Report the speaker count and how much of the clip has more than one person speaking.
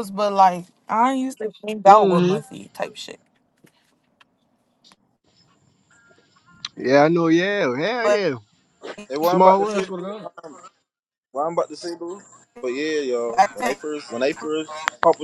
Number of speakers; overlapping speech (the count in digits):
3, about 12%